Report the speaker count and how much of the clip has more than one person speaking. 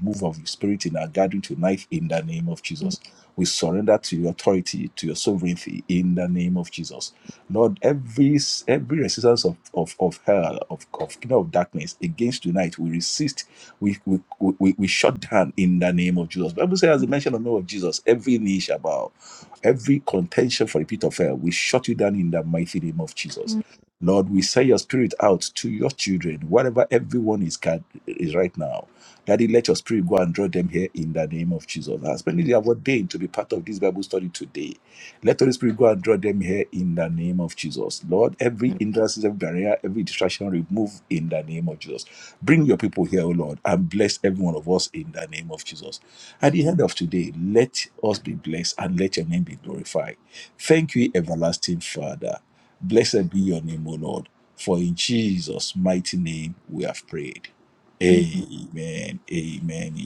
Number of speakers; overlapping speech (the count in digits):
1, no overlap